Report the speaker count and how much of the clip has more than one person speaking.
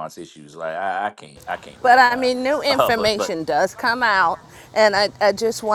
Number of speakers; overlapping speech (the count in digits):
2, about 19%